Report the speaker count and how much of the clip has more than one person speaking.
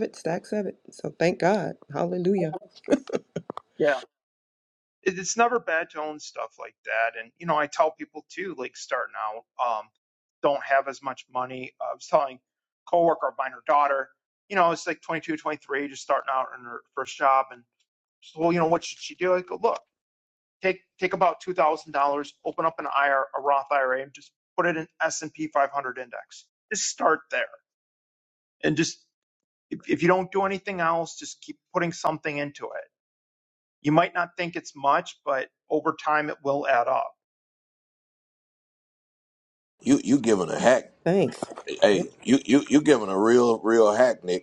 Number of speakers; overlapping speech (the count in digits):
3, no overlap